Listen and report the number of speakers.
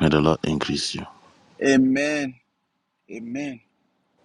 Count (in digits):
2